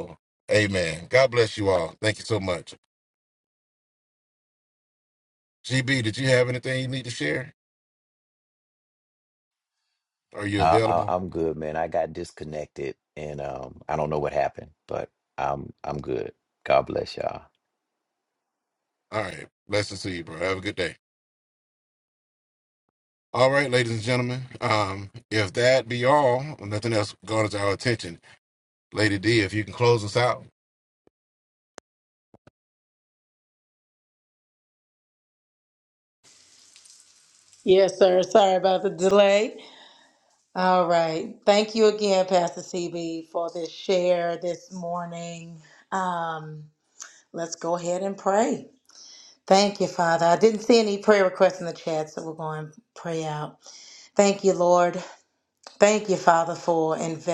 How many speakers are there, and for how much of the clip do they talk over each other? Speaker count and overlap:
three, about 1%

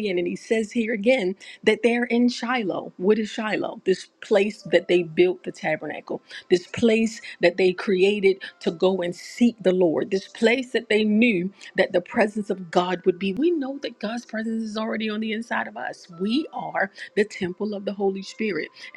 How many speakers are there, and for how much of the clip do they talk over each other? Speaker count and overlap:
one, no overlap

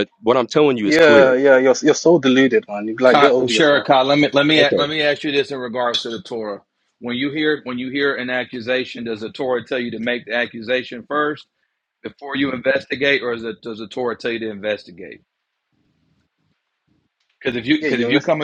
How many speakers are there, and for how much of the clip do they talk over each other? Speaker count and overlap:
three, about 11%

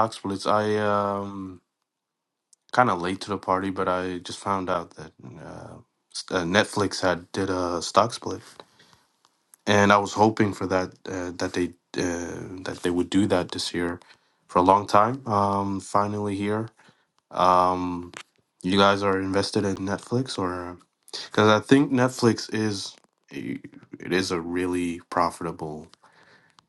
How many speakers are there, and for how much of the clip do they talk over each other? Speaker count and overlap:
one, no overlap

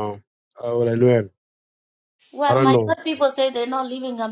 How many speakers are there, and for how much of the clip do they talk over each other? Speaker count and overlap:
two, about 10%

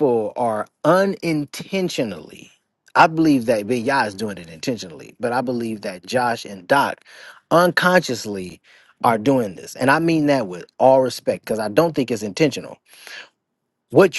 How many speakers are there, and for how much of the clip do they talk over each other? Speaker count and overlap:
one, no overlap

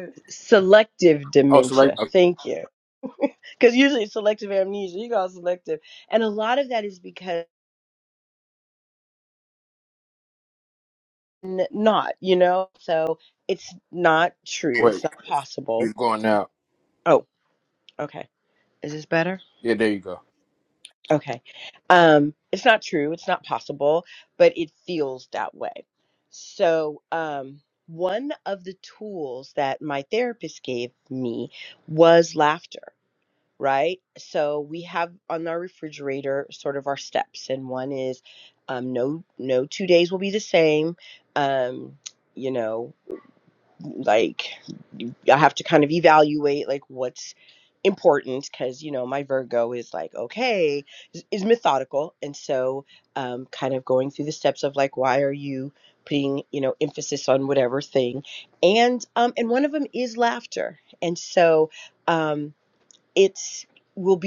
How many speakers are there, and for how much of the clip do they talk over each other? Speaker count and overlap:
two, about 2%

